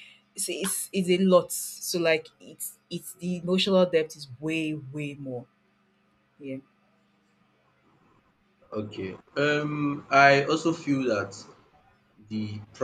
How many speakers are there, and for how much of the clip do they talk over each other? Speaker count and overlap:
two, no overlap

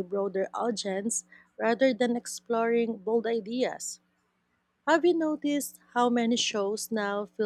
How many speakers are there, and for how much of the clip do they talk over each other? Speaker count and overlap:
one, no overlap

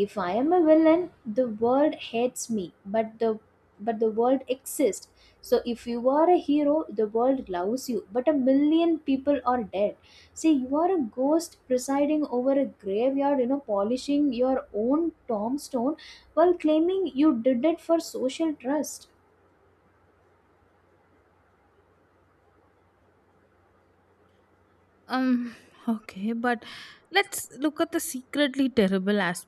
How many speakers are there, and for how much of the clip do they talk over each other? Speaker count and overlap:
two, no overlap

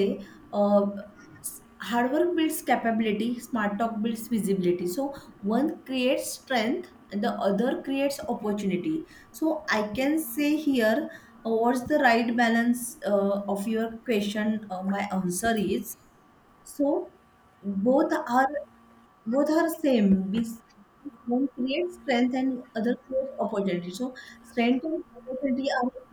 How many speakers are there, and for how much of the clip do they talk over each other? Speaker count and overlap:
one, no overlap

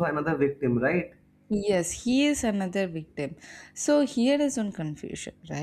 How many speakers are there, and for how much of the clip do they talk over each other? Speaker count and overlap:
two, no overlap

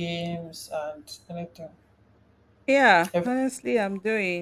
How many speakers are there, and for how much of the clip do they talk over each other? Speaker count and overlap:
two, no overlap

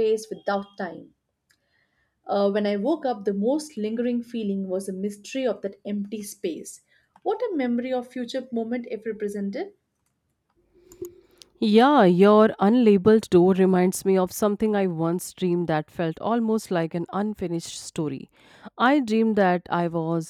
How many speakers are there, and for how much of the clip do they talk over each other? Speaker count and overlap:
two, no overlap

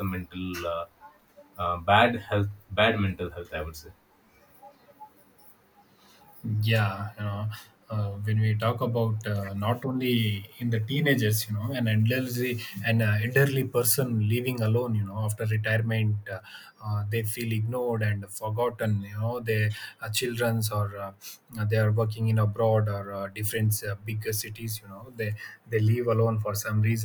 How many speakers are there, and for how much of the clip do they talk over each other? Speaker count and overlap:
two, no overlap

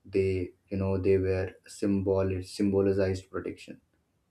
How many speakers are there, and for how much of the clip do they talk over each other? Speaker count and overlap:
one, no overlap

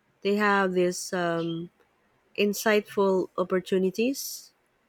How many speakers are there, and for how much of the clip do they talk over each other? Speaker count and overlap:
one, no overlap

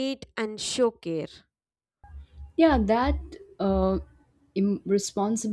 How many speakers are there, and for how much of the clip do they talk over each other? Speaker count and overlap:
two, no overlap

